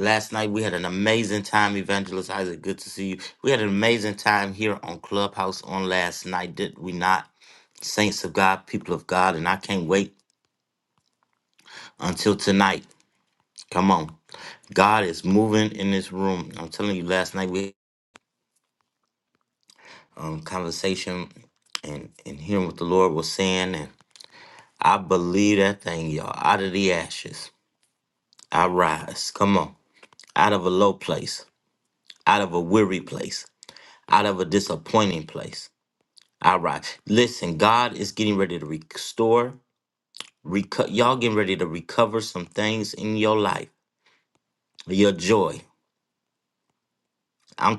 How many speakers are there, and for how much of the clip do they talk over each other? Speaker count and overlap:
1, no overlap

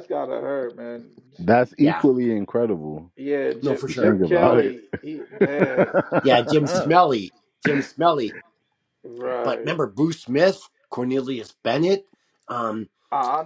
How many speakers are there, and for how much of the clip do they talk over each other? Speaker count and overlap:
3, about 13%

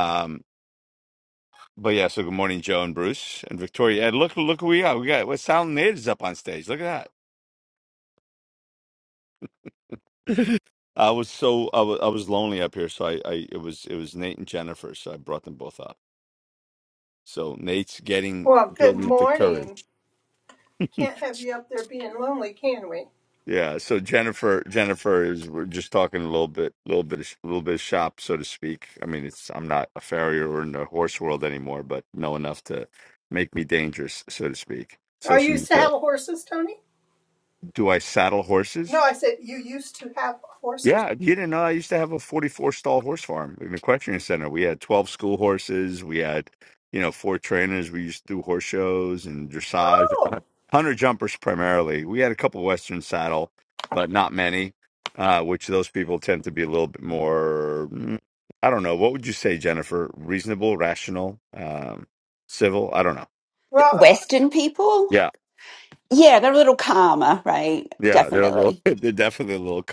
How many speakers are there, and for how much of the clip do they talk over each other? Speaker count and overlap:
3, about 5%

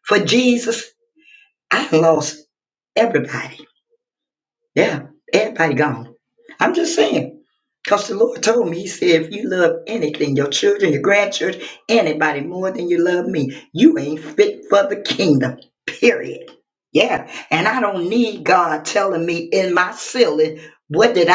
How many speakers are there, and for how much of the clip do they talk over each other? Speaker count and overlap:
1, no overlap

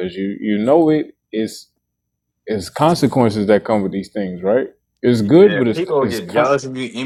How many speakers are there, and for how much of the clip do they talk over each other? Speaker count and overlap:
2, about 20%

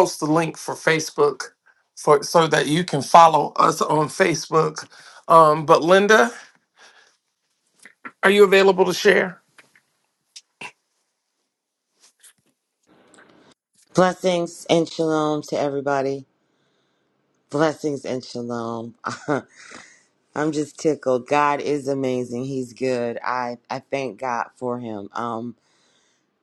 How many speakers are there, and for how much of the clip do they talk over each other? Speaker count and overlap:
2, no overlap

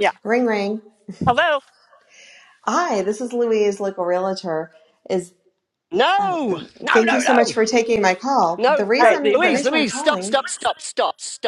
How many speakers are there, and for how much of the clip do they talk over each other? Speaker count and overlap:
3, about 23%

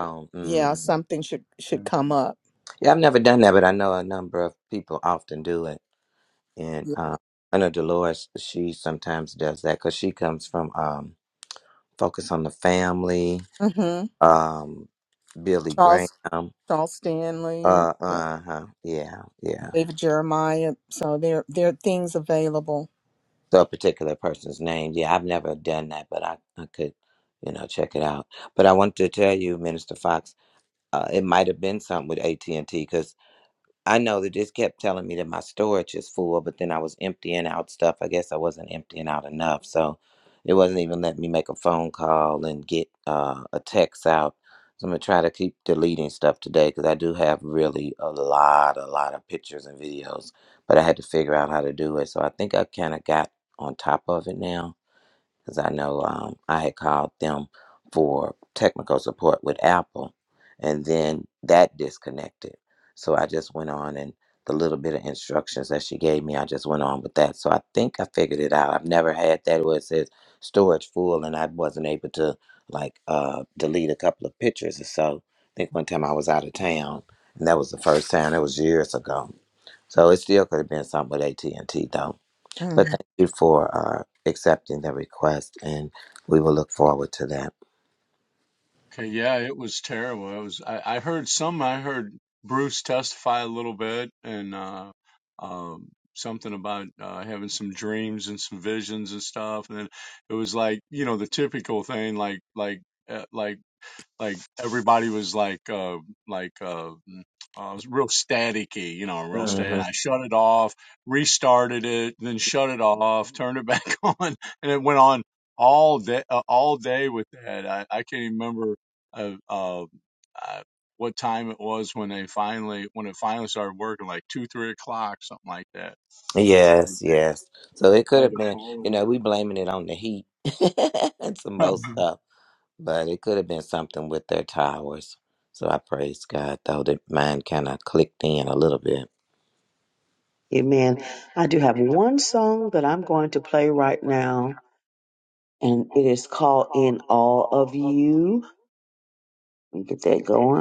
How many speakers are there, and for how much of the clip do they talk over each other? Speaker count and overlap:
4, about 2%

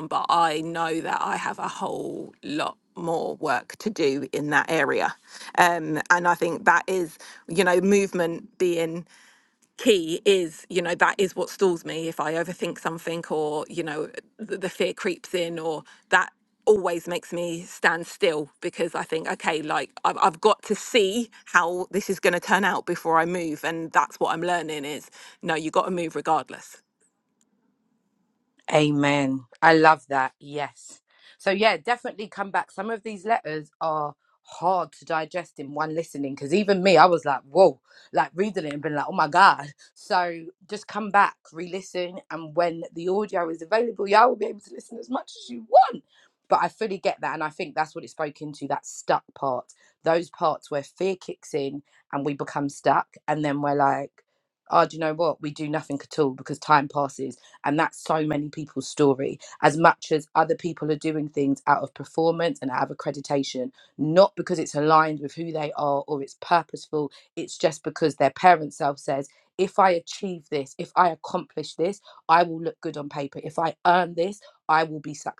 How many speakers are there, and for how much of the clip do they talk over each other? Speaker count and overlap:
2, no overlap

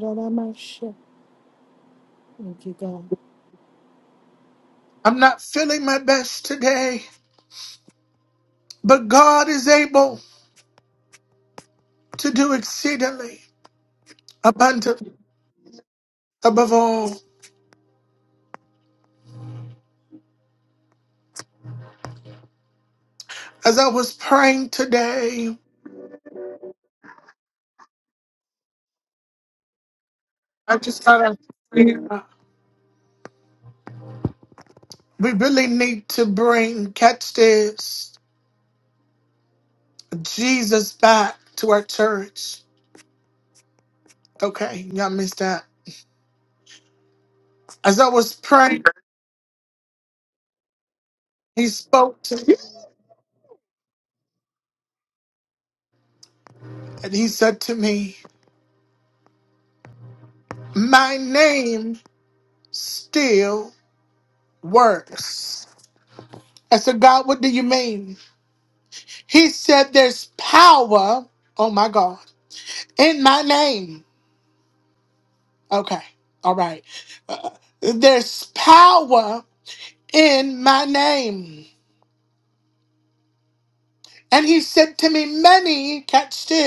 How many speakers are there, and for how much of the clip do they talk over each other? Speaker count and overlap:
2, no overlap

